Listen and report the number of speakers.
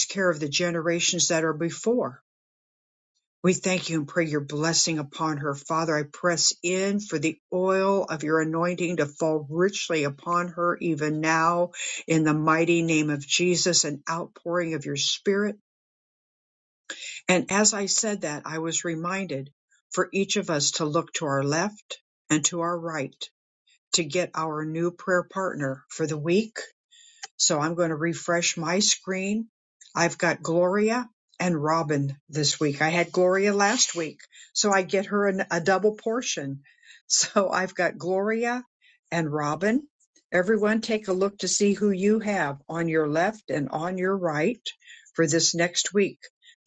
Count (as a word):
one